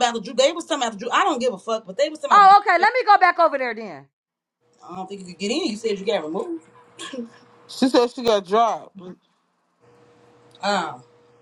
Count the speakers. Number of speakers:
three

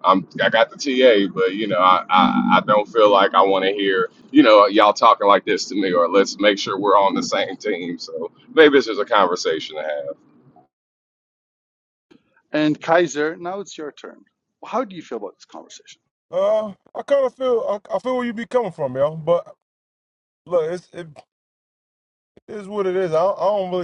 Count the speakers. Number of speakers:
three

